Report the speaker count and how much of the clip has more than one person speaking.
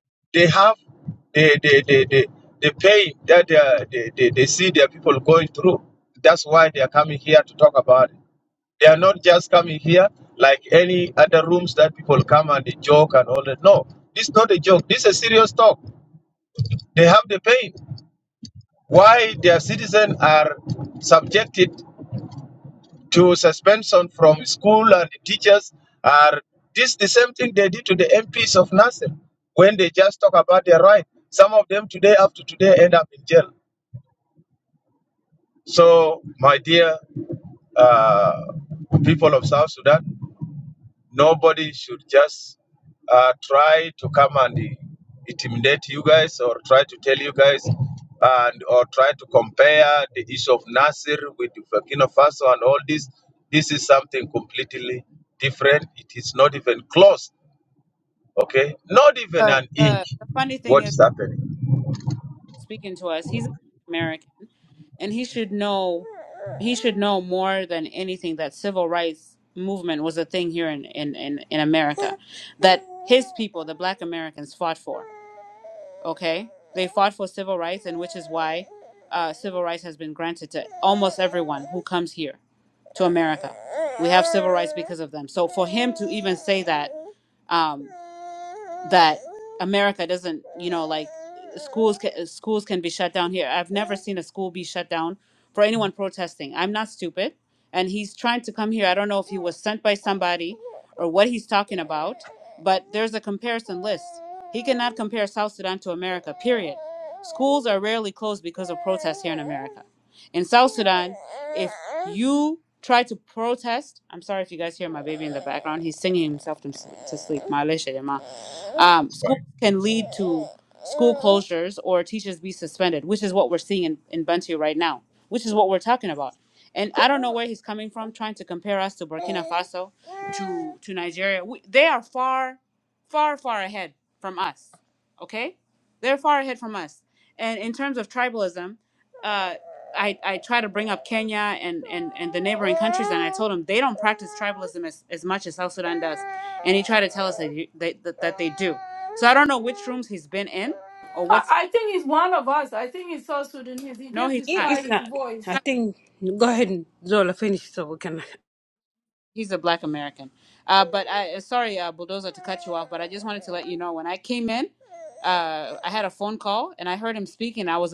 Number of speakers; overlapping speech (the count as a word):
four, about 1%